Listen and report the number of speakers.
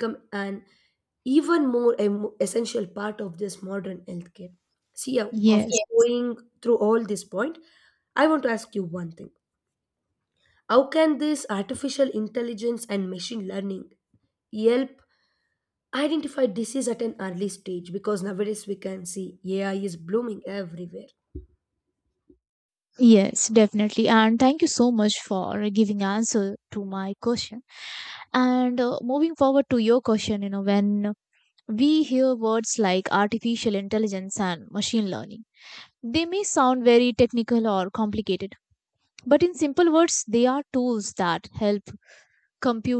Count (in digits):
2